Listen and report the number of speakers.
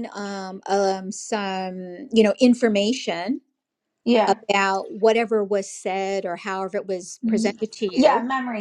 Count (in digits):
2